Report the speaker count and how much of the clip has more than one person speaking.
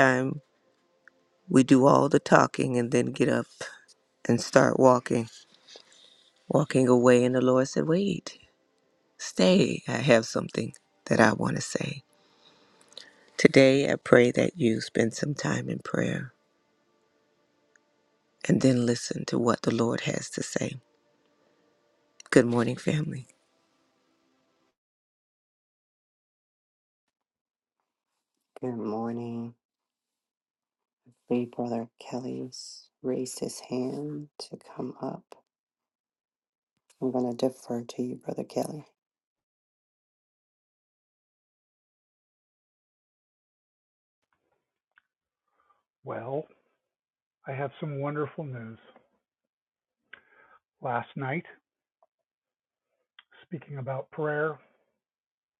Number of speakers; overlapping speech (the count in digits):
3, no overlap